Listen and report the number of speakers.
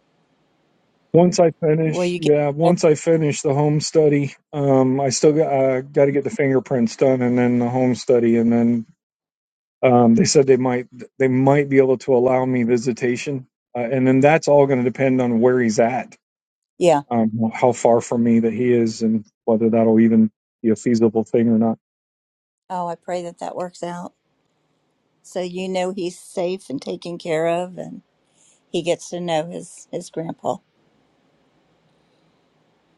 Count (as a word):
two